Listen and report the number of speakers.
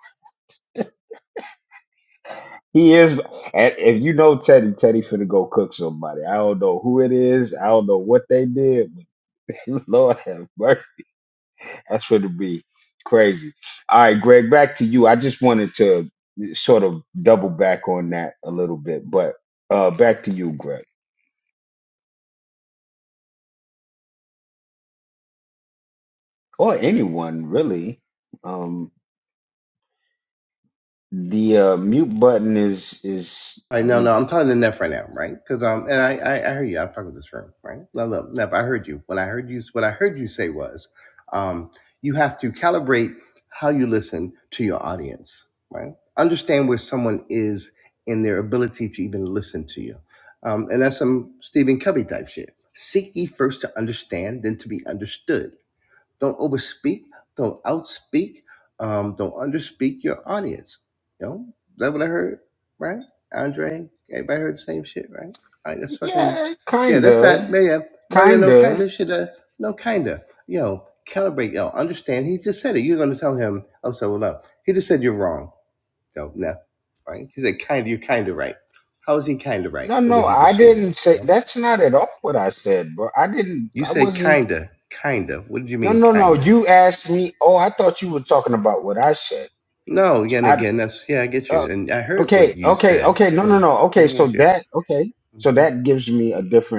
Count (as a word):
two